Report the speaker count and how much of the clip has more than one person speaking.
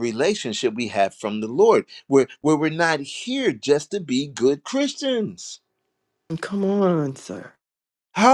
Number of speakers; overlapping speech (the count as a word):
two, no overlap